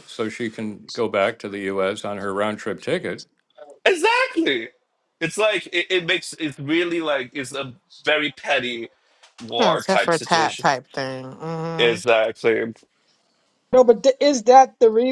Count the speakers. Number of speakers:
4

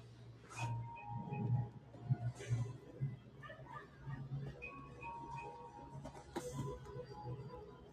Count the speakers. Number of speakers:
0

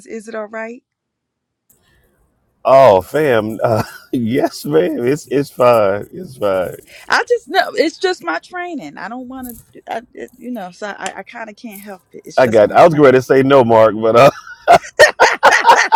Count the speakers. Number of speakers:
2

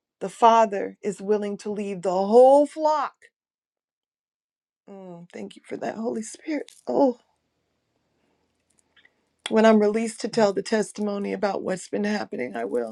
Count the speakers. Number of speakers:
1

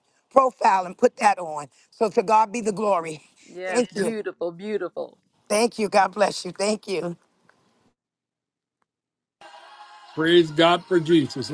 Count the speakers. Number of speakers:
3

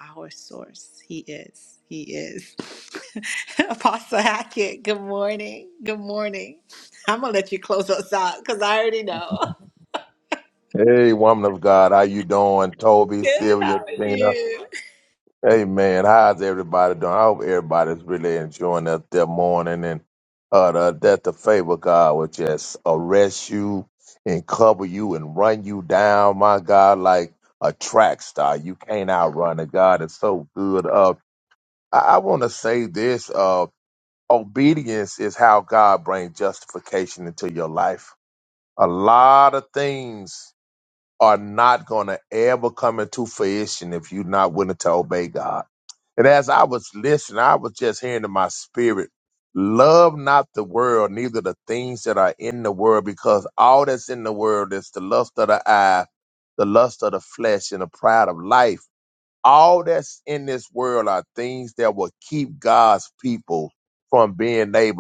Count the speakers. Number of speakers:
2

